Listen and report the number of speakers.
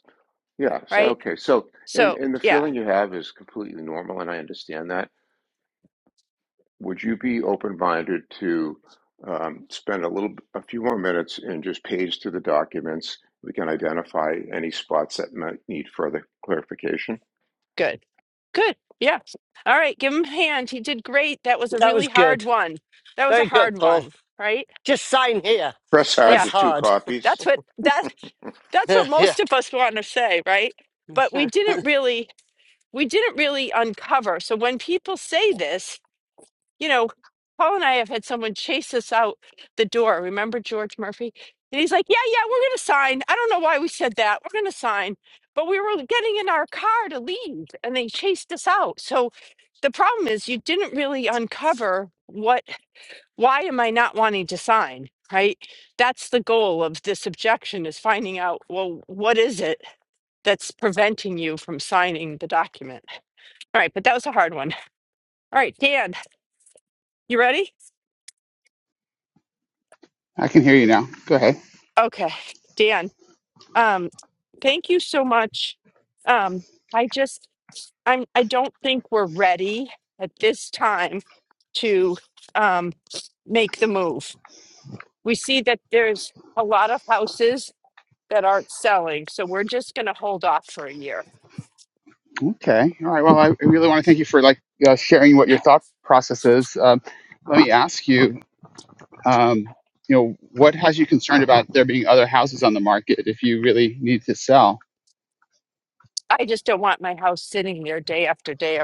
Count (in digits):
4